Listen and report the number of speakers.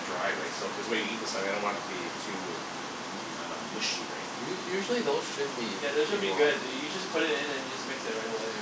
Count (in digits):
3